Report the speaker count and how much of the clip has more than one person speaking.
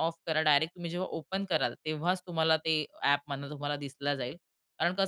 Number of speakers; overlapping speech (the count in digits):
1, no overlap